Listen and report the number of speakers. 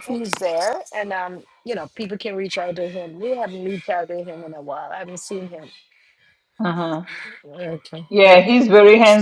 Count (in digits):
2